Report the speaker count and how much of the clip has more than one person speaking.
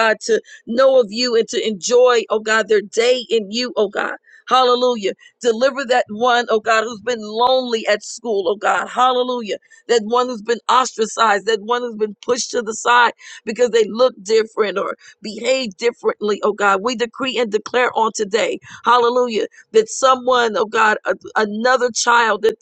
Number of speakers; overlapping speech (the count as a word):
one, no overlap